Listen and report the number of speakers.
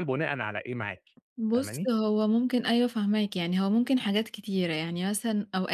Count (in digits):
2